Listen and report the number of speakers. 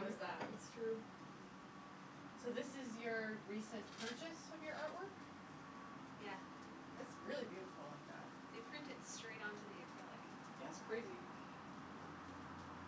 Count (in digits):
3